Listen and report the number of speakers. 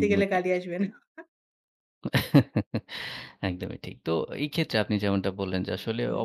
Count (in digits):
2